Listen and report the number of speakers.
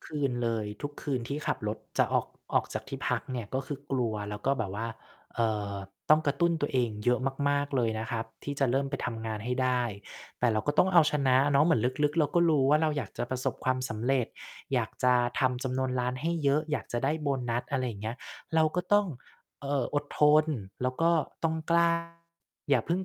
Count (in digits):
1